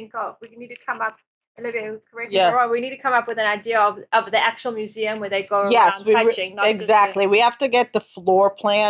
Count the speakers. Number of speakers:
two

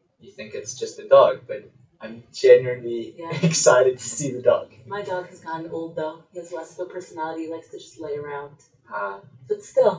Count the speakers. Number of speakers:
two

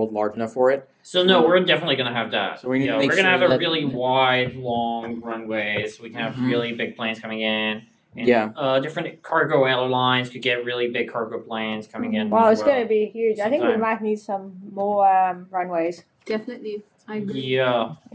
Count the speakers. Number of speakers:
four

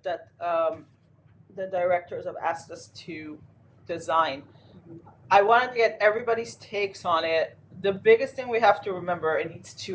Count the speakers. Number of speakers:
one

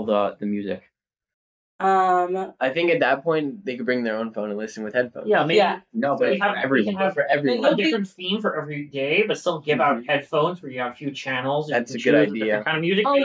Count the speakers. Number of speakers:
four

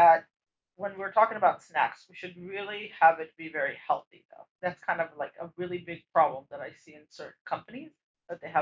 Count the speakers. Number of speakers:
one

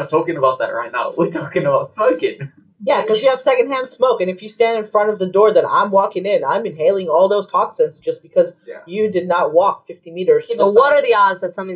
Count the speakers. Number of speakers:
three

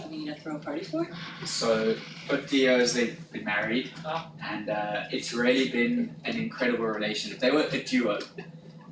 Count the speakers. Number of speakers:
two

